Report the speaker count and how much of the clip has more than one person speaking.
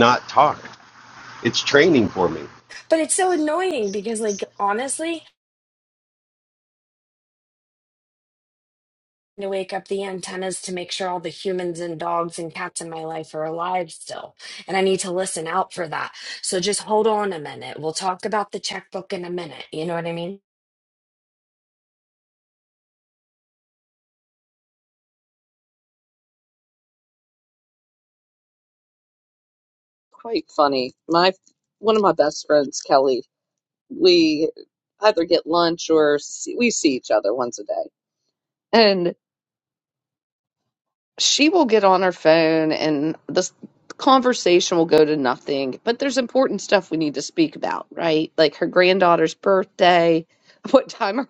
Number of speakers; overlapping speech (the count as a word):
three, no overlap